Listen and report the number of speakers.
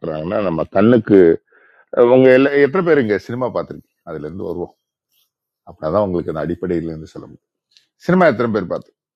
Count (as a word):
one